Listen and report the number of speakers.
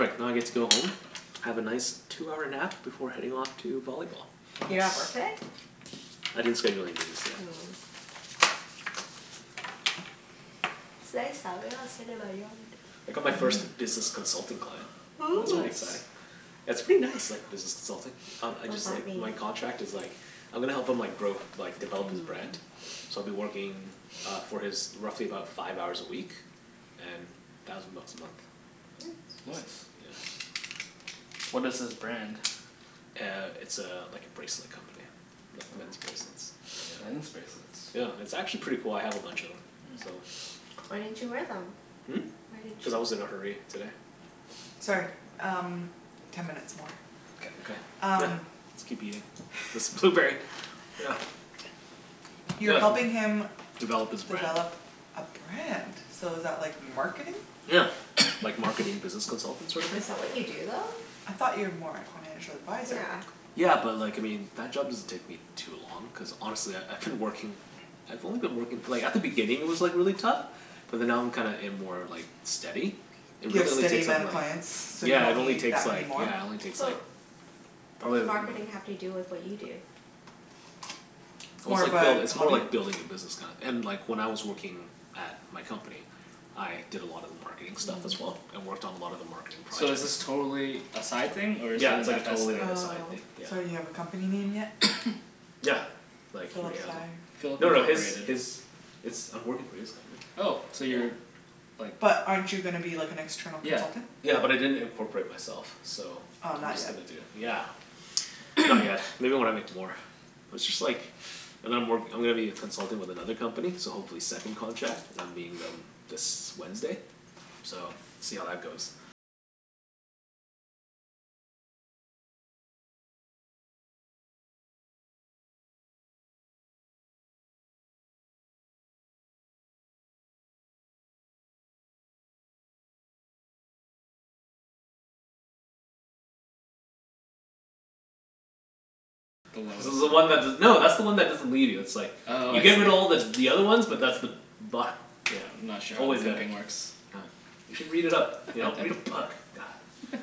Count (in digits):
4